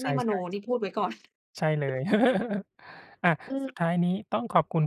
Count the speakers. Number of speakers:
two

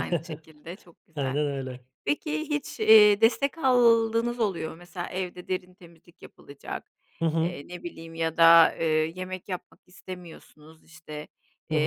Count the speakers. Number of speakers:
two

